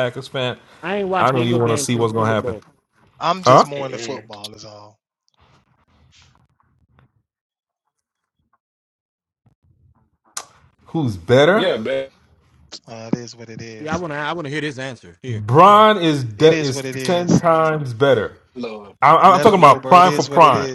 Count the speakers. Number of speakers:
4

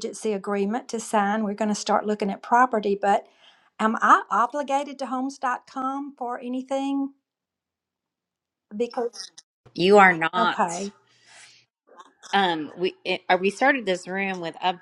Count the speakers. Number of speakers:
2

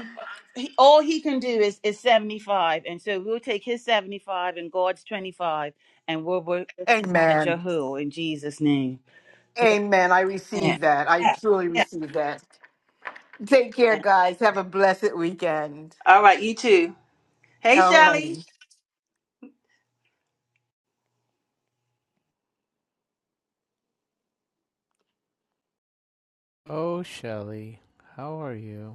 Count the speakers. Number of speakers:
3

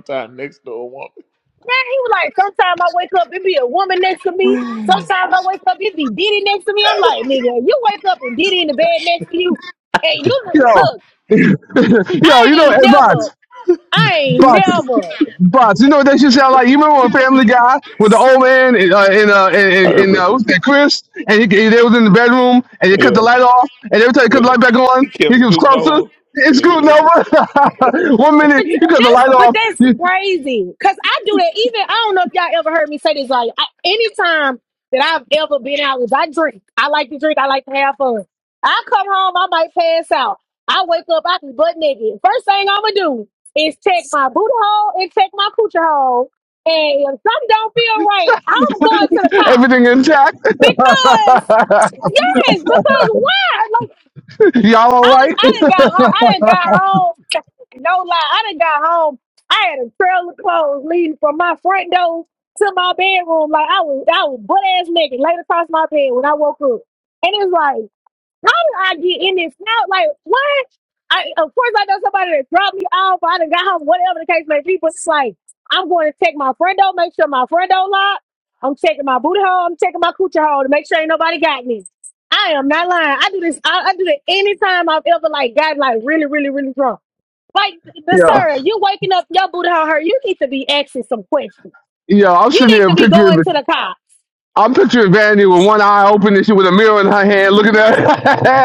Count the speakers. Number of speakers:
3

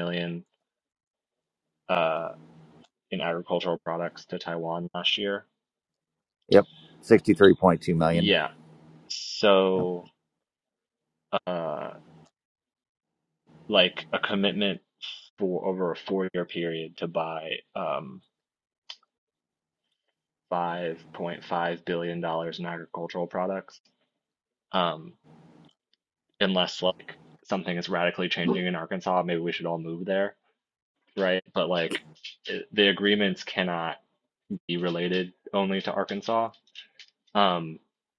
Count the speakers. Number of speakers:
2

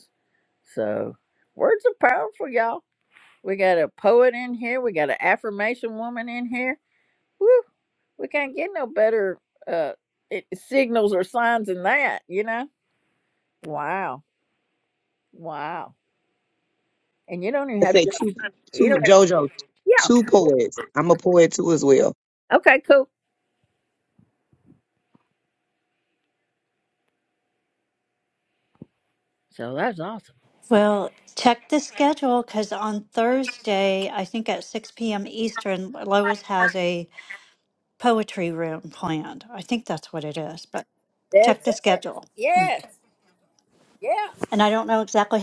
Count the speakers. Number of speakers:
3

